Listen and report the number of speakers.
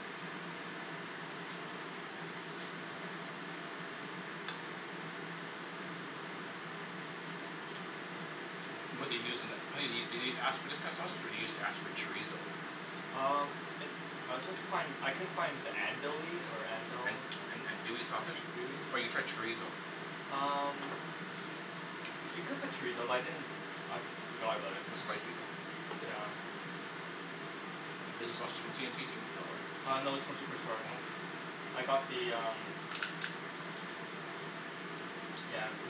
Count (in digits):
2